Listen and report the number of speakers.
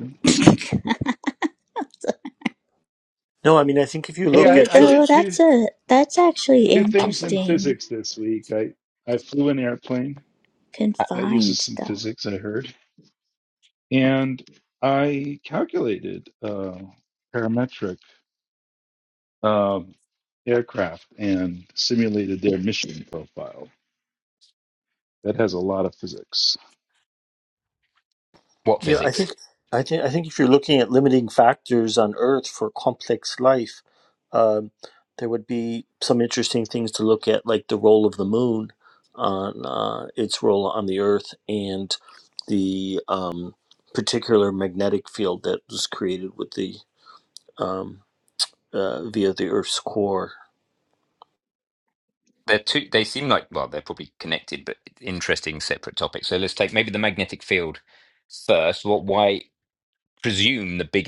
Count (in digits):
4